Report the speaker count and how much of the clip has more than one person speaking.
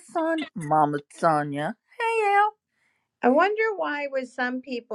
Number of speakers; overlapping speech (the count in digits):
2, no overlap